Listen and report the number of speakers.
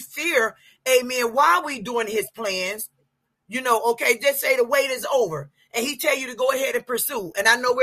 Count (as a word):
one